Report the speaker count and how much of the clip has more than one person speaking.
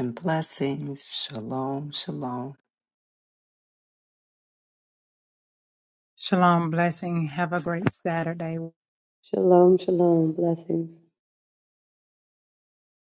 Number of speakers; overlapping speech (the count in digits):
3, no overlap